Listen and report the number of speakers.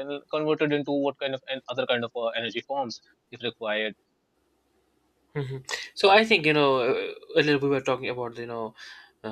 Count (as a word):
two